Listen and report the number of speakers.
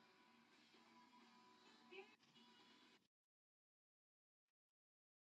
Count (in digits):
0